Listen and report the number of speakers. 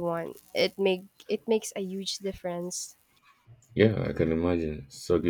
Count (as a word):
two